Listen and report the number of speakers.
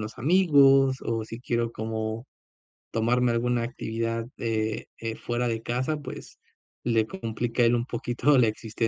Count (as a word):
one